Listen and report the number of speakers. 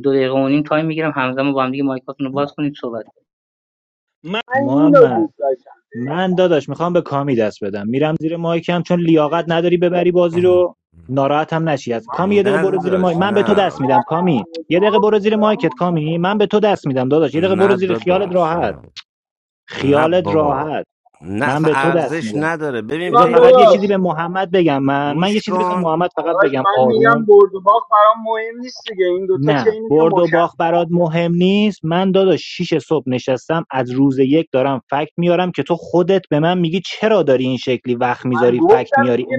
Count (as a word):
four